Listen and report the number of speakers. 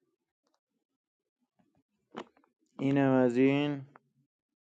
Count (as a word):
one